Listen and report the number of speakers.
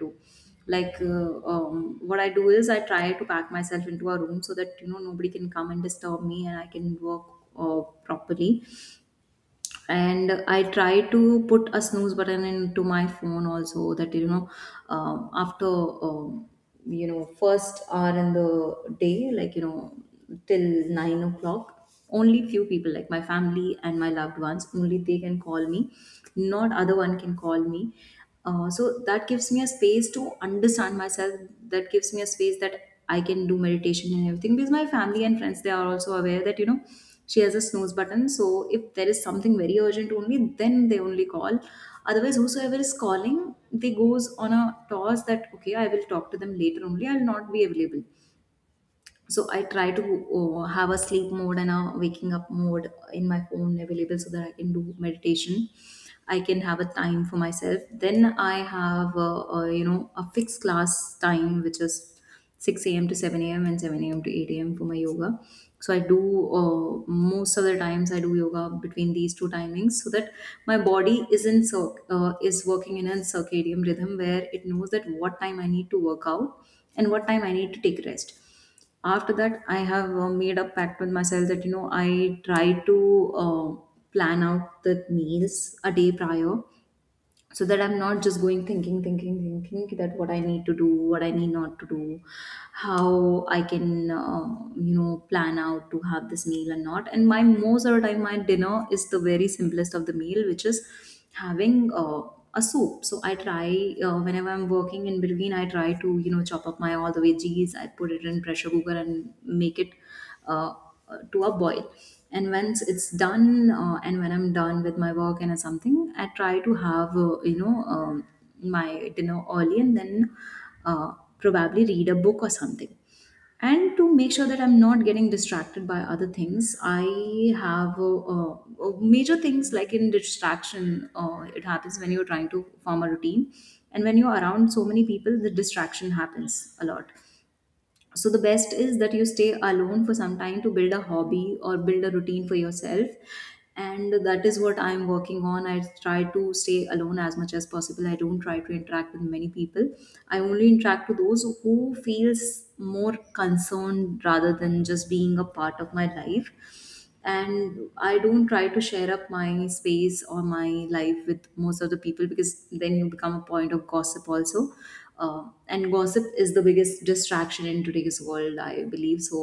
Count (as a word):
one